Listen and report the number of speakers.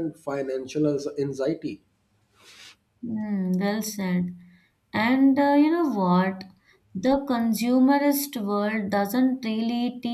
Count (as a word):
two